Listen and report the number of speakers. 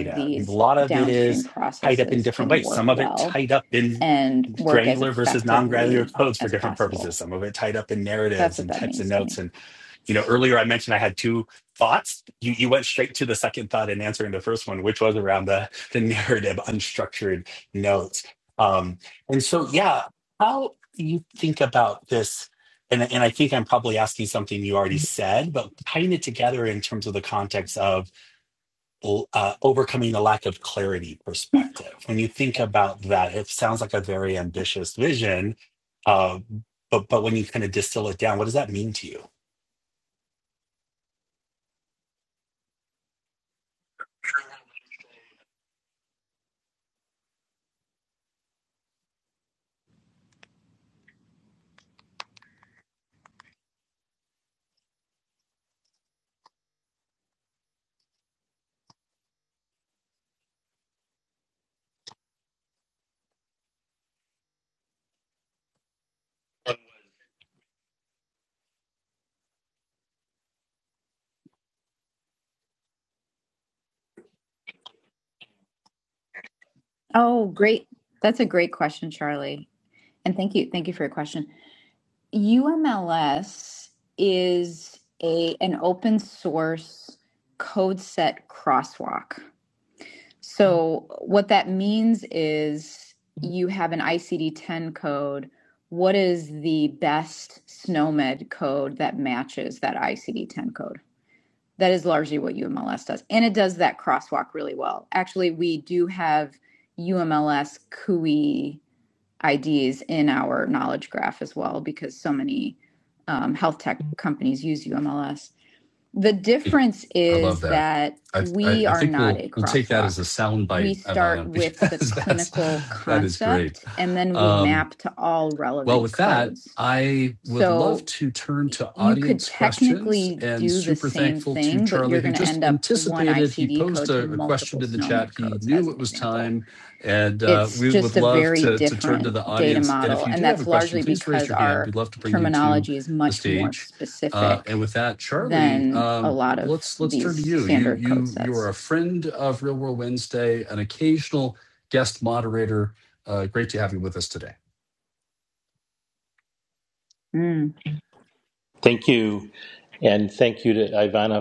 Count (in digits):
4